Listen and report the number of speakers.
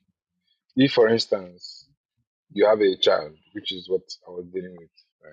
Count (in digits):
1